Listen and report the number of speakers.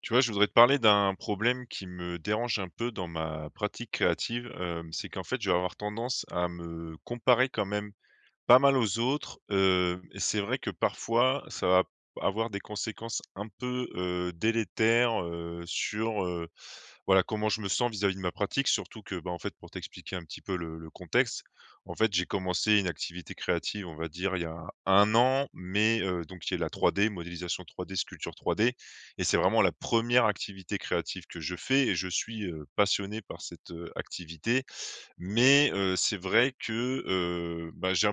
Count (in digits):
1